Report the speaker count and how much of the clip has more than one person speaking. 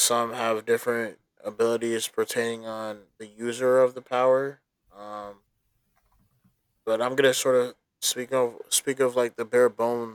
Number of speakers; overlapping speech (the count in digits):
1, no overlap